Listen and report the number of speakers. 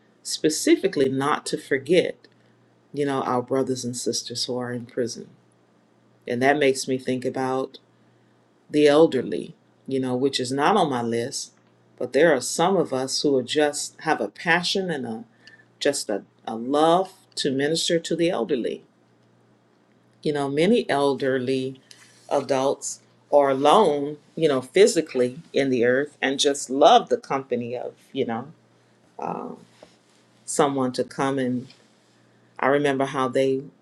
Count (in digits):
1